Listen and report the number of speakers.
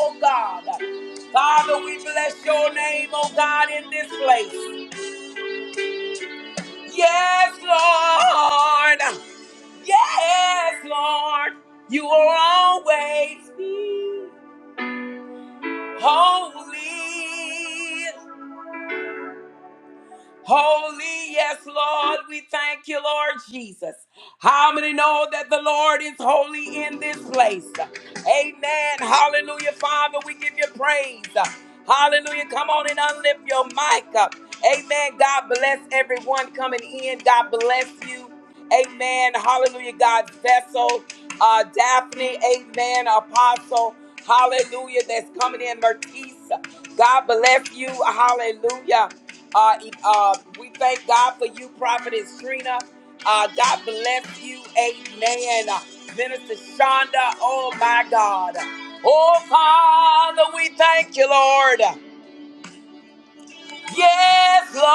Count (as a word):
one